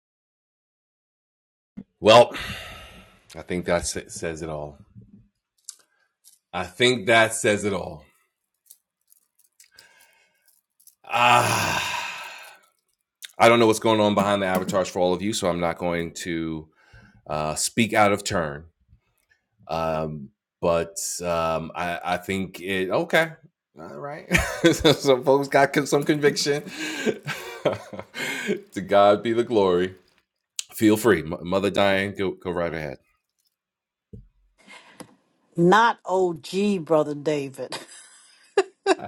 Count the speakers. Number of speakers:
two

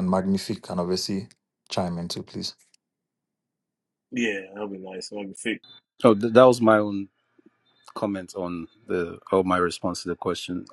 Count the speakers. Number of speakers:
three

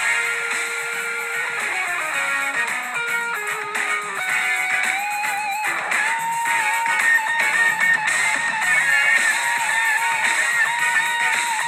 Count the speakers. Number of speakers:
zero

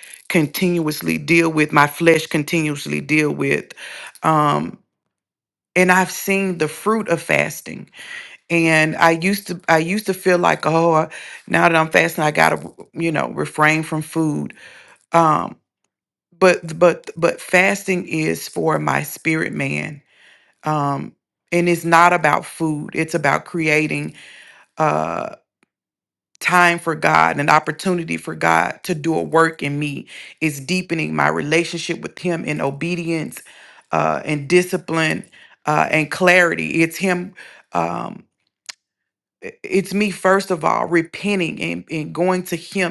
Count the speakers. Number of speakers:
one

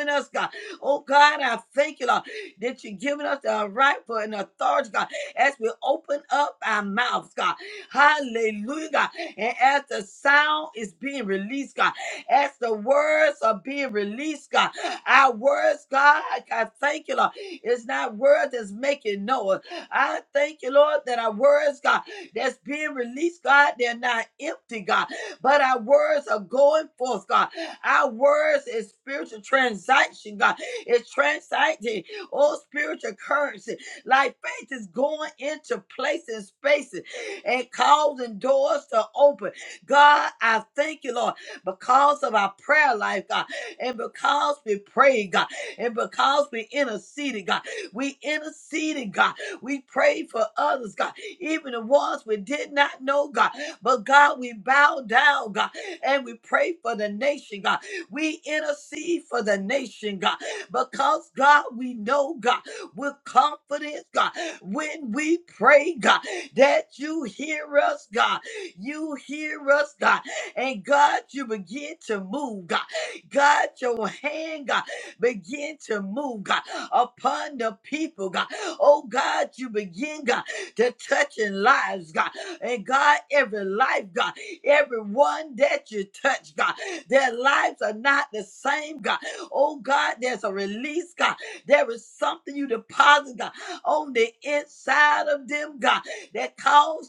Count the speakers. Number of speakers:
one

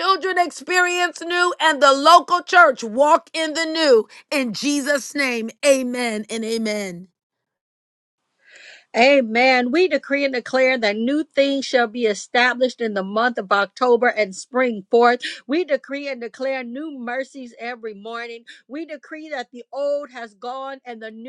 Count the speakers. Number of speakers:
two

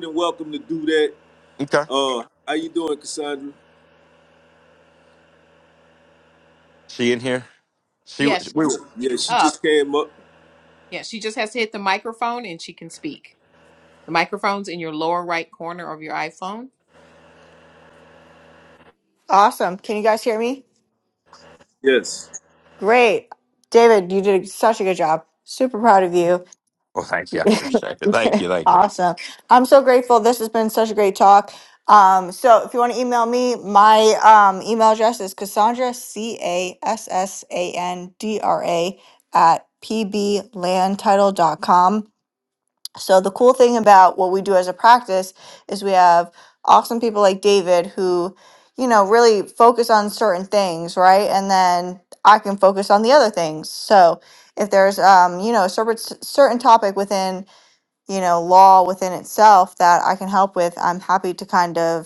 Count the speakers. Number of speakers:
four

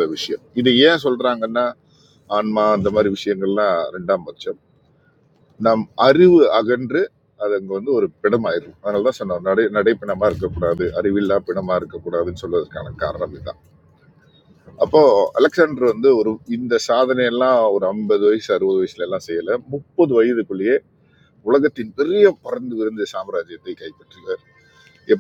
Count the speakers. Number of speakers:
one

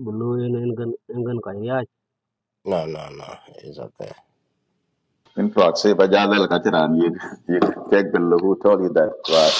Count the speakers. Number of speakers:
three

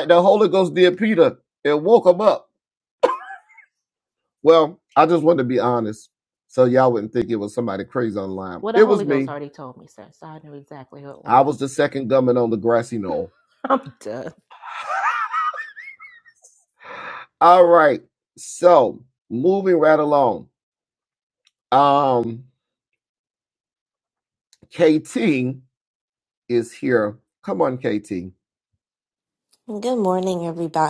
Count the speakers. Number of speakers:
three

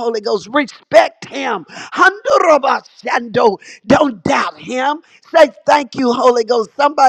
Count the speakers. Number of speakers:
one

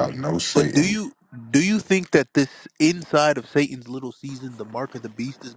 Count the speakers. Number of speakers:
two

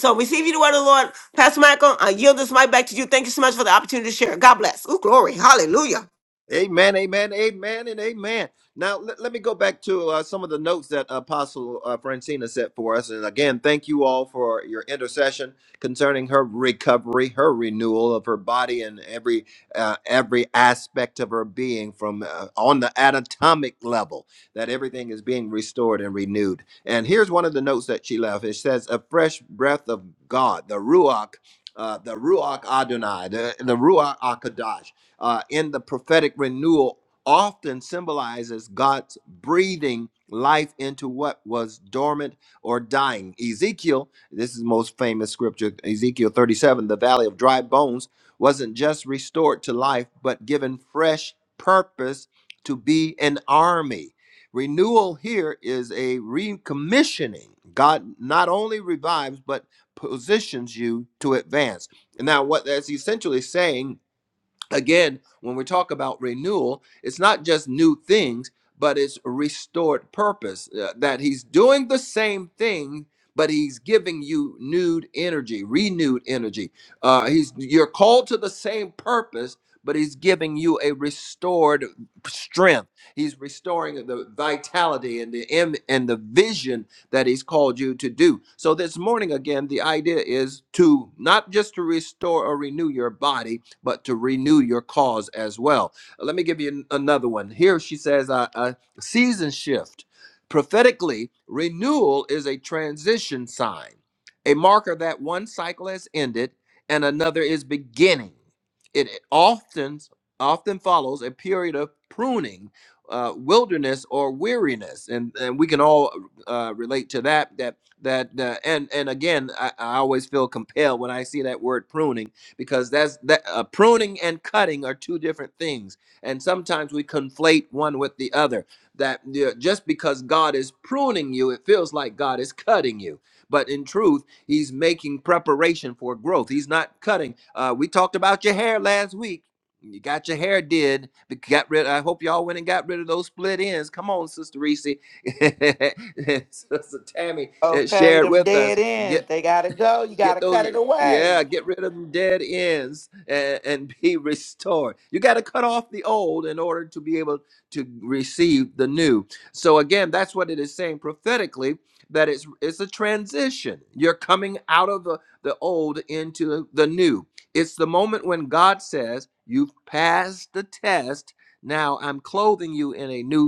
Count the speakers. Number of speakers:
three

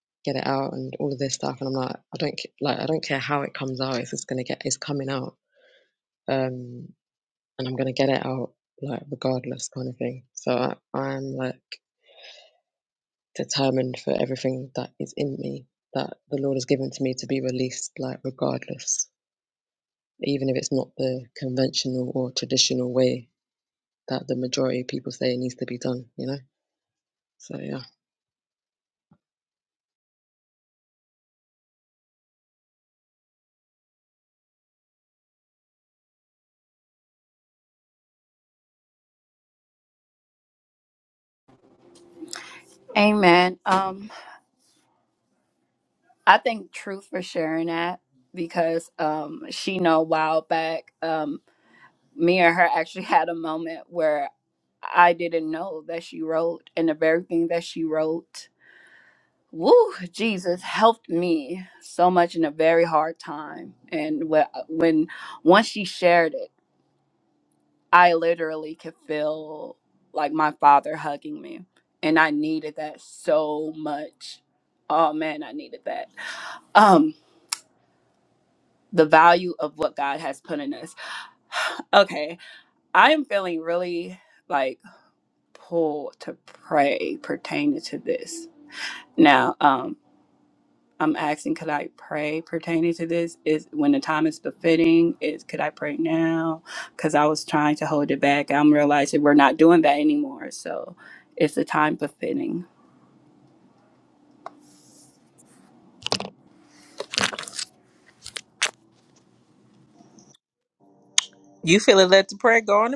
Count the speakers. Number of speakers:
three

